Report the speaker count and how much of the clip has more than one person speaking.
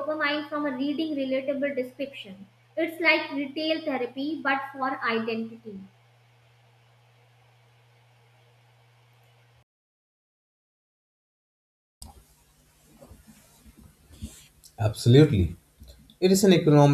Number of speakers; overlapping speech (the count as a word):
two, no overlap